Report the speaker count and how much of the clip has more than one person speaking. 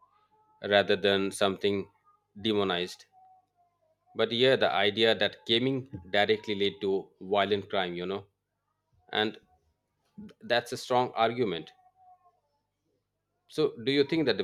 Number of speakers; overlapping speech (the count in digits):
1, no overlap